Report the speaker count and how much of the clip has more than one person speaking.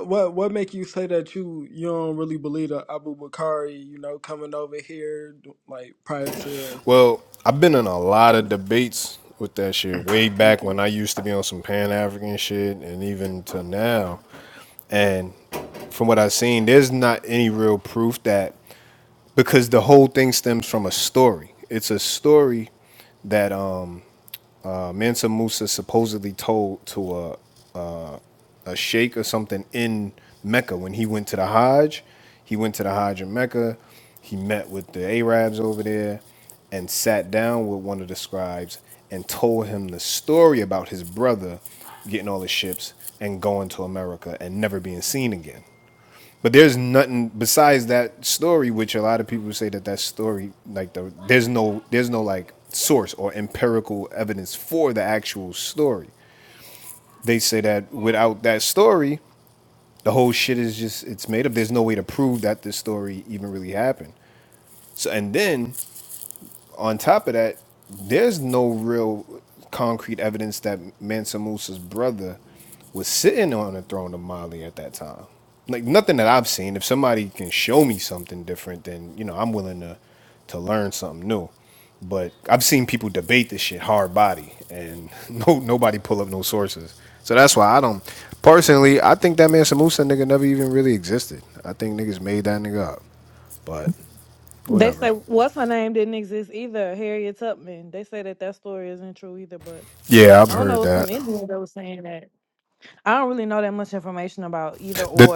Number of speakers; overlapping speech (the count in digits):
3, about 2%